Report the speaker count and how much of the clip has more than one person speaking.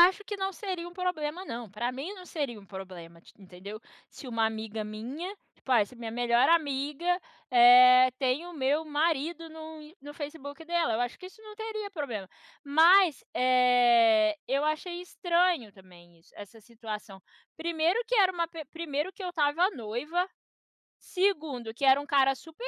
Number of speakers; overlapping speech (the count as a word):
one, no overlap